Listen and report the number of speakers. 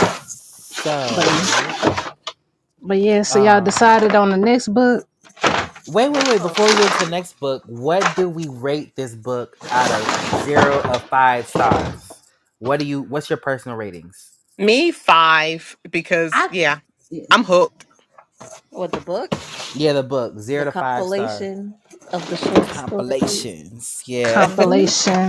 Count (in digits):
4